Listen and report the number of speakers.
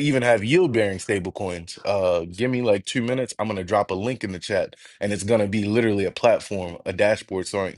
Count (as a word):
one